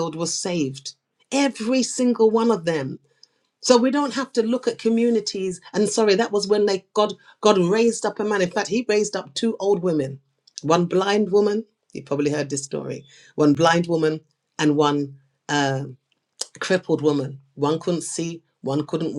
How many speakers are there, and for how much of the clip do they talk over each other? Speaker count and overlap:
1, no overlap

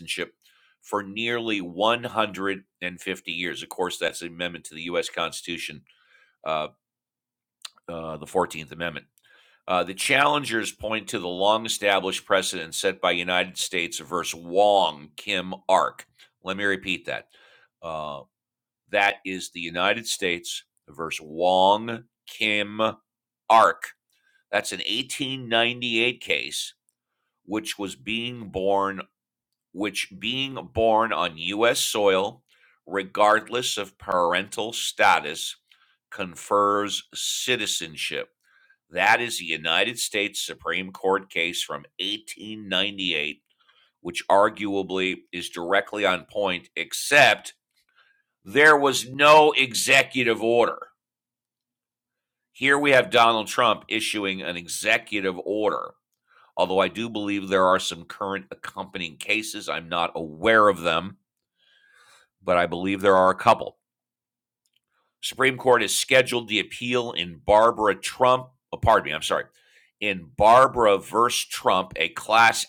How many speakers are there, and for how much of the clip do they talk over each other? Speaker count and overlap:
1, no overlap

